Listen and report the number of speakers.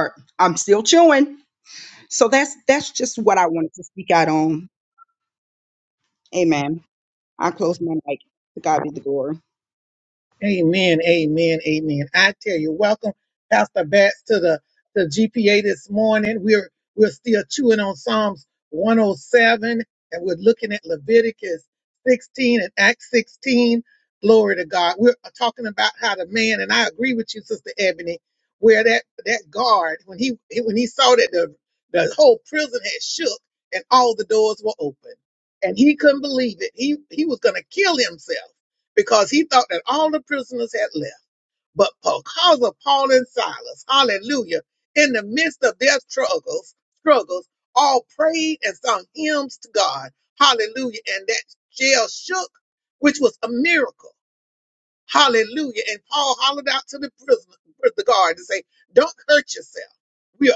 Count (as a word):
two